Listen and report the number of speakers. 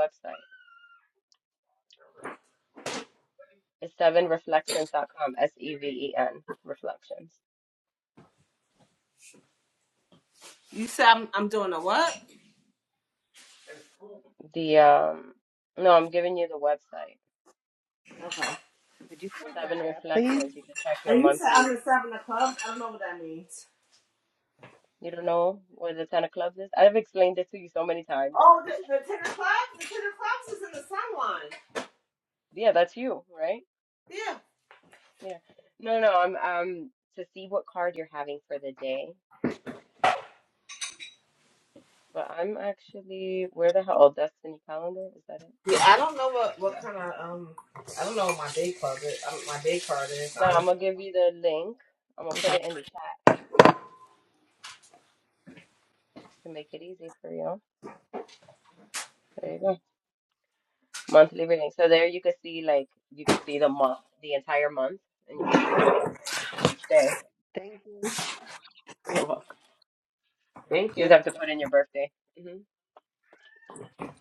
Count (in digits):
3